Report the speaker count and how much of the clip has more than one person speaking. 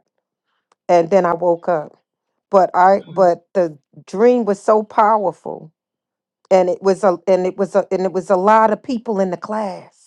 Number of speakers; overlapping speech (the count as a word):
one, no overlap